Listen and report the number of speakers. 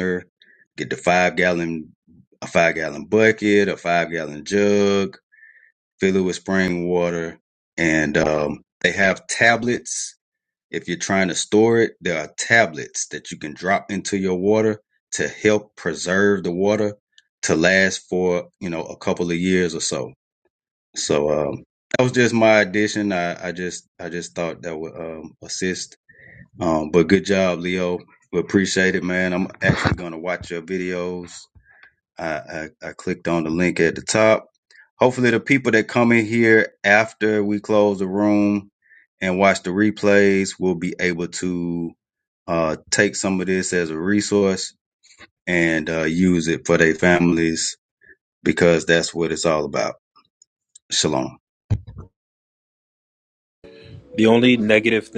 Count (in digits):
2